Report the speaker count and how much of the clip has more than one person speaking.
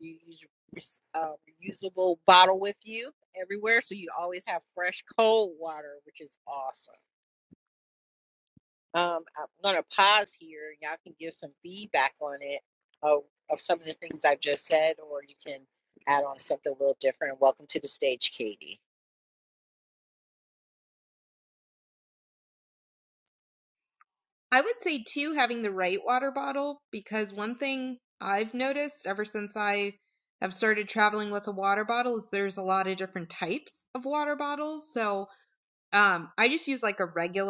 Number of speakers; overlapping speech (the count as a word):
two, no overlap